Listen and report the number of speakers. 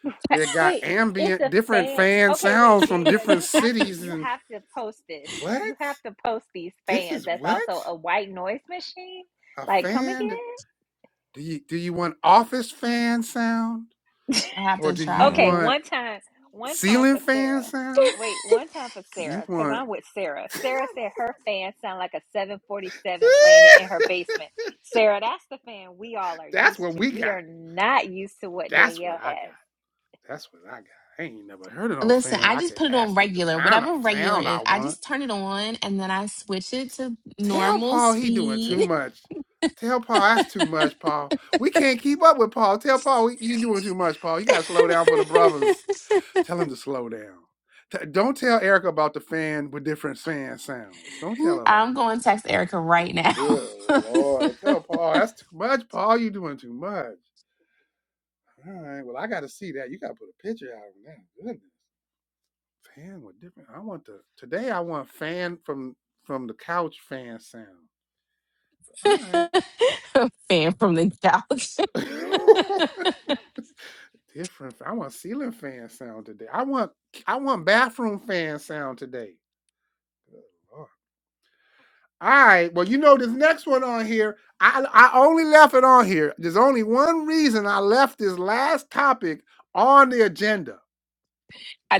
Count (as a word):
three